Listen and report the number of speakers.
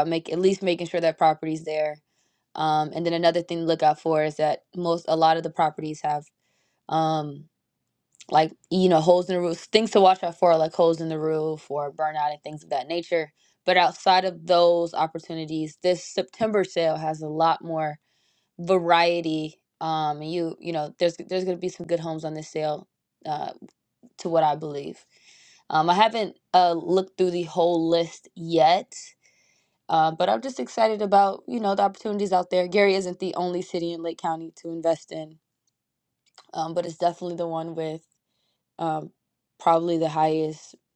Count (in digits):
1